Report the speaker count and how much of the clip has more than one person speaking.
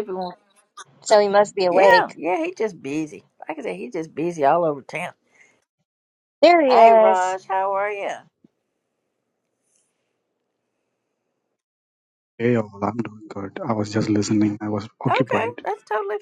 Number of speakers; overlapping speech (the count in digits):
3, about 9%